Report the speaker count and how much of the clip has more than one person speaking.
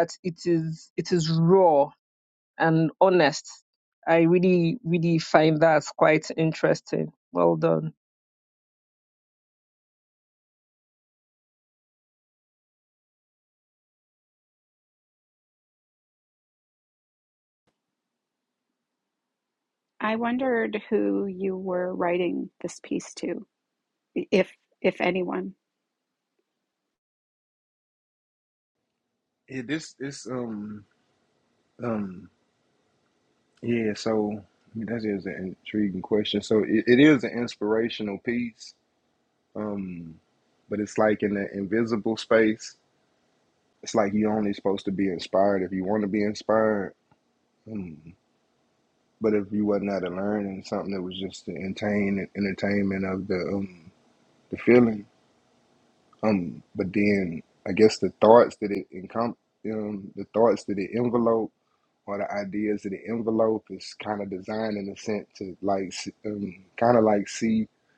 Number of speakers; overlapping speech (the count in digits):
3, no overlap